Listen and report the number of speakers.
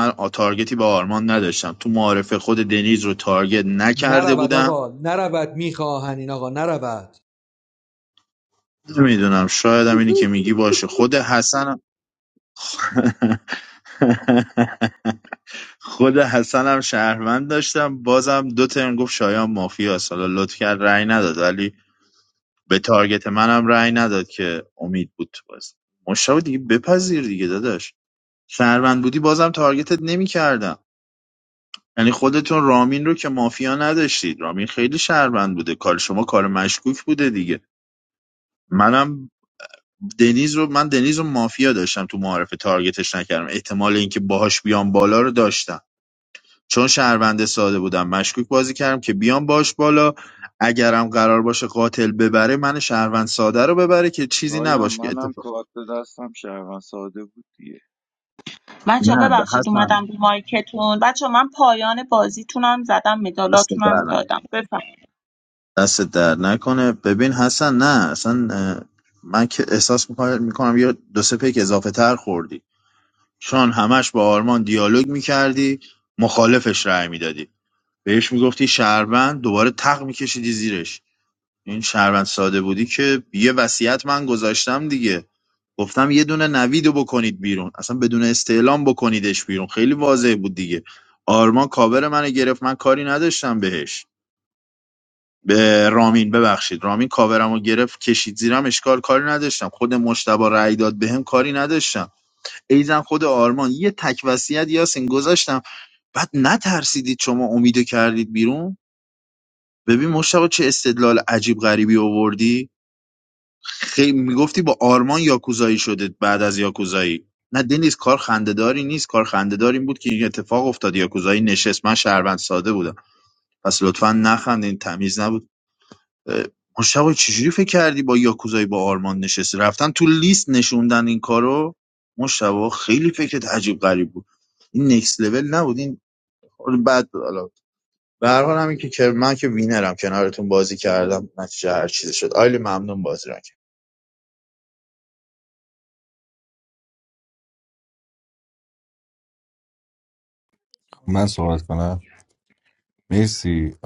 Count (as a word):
five